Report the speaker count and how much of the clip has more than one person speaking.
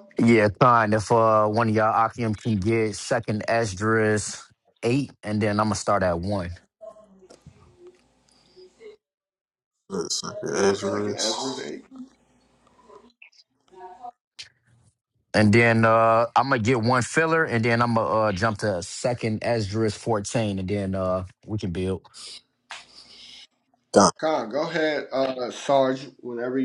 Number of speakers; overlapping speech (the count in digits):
3, about 5%